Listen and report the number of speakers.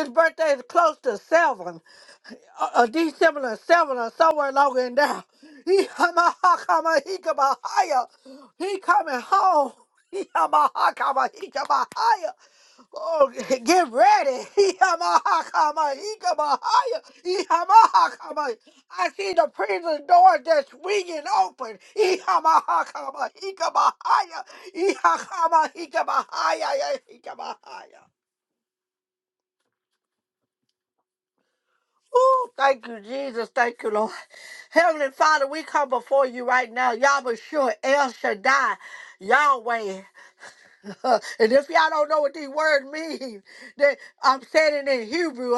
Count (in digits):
1